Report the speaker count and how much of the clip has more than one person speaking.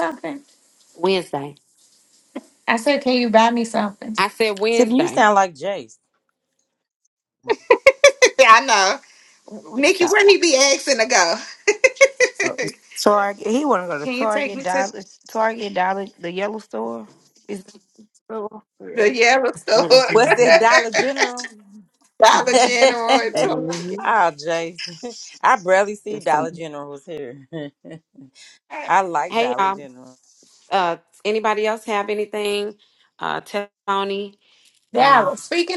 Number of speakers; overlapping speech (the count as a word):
four, about 12%